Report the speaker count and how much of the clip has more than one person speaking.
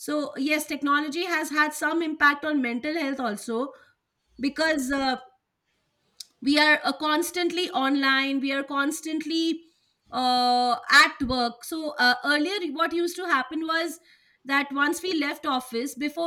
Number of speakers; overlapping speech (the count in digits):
1, no overlap